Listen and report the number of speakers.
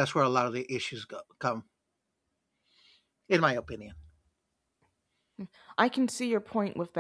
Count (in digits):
2